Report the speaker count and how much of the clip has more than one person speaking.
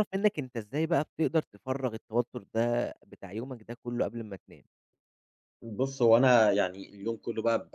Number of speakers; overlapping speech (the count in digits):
2, no overlap